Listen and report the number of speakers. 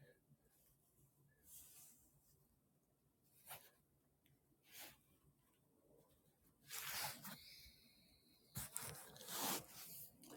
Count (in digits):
0